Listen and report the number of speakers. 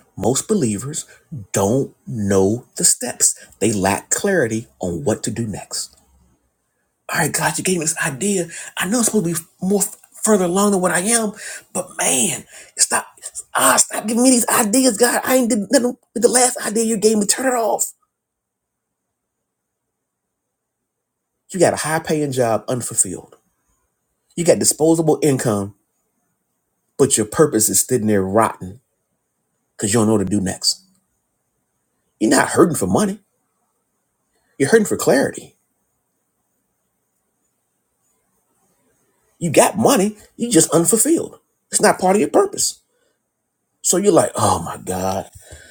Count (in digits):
1